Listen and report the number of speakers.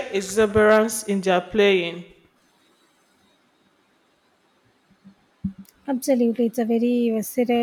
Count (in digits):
2